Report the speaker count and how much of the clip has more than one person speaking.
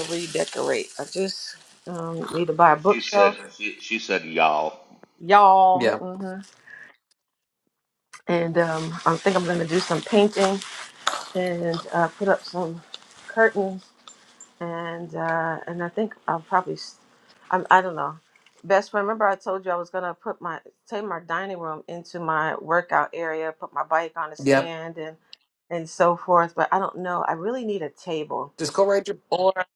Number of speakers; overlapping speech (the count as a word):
three, about 4%